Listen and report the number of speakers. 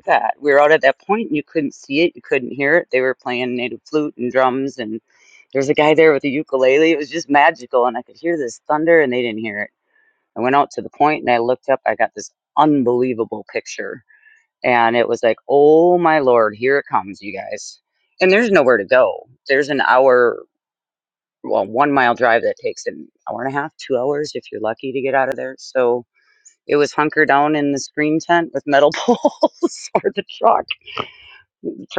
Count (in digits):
1